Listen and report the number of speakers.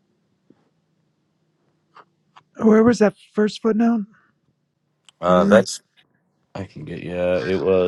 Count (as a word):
two